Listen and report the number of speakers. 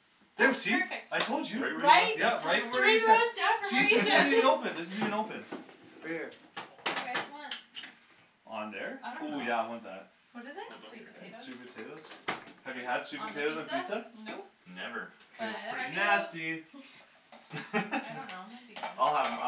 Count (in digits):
4